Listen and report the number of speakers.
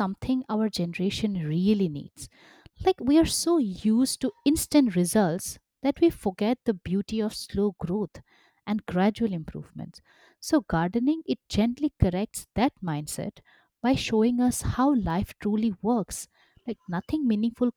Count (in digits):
1